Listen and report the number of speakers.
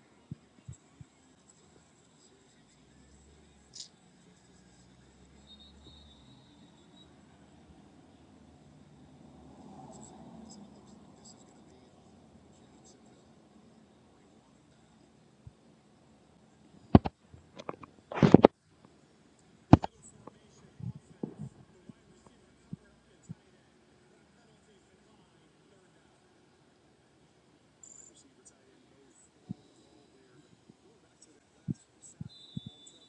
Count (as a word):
zero